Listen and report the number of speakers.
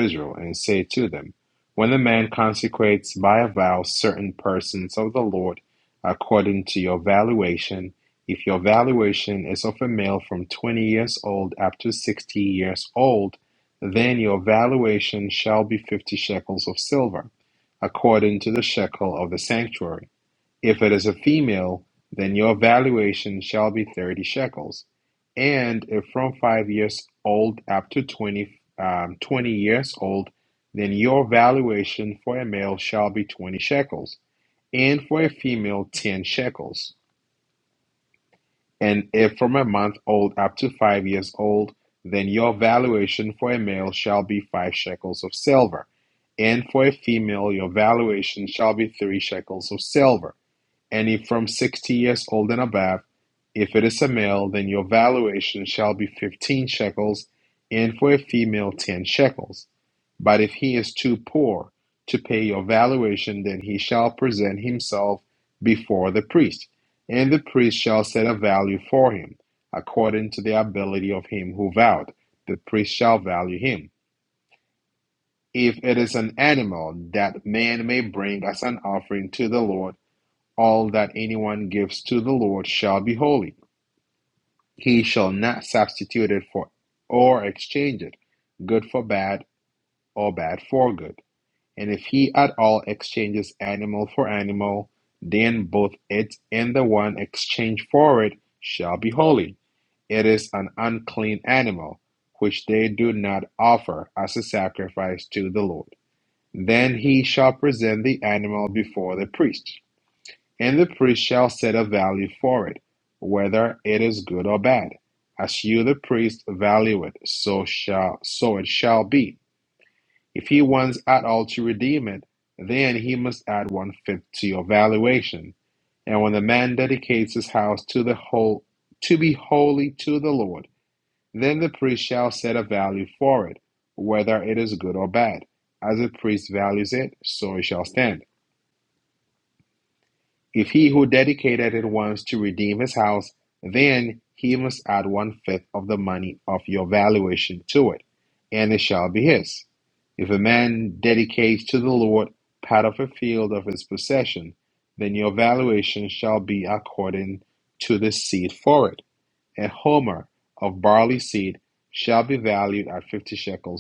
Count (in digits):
1